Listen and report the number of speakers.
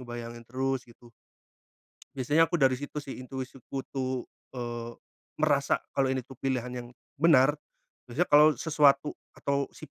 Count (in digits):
1